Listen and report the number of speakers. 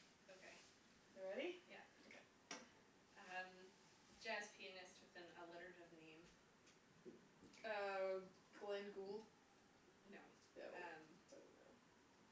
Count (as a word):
two